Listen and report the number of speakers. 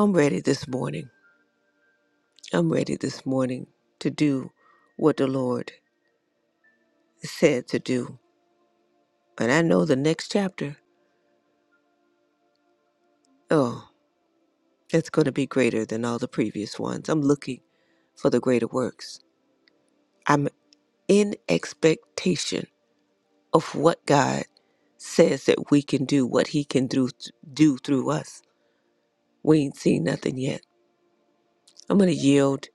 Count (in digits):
1